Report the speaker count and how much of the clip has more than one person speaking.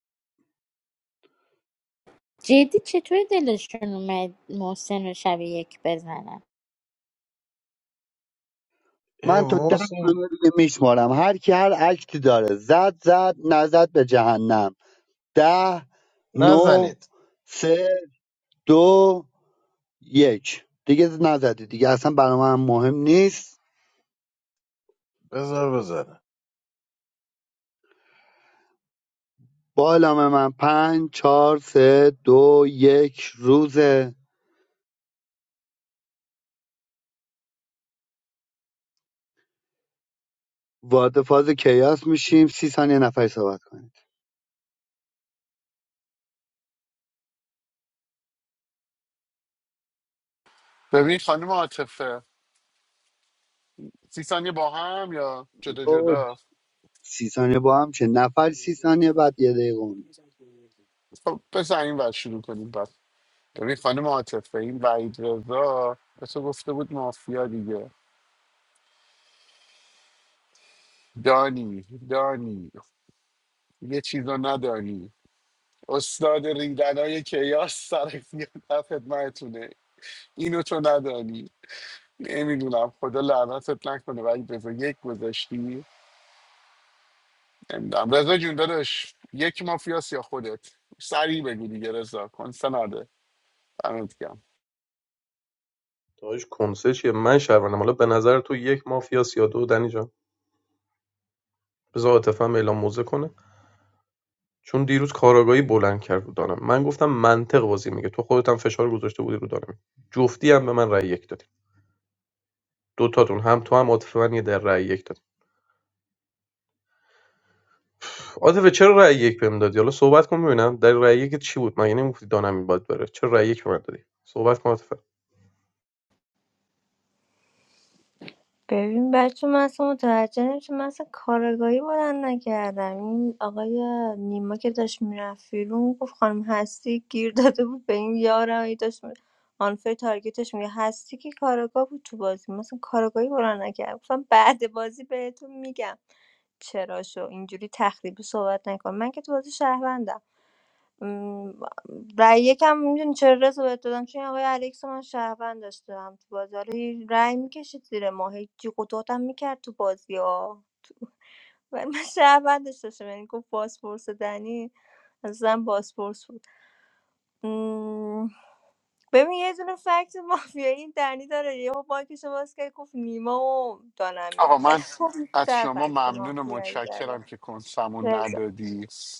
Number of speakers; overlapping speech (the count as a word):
six, about 2%